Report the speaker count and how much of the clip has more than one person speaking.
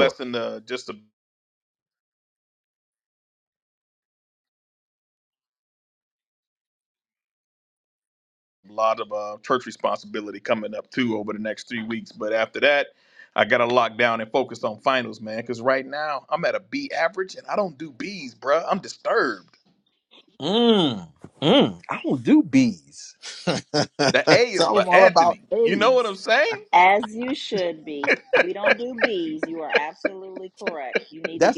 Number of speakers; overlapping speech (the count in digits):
3, about 7%